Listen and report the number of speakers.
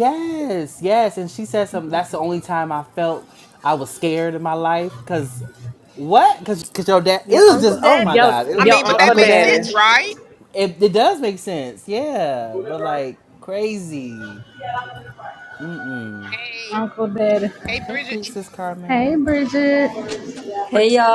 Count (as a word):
four